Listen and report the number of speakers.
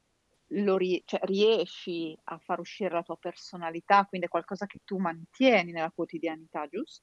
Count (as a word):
one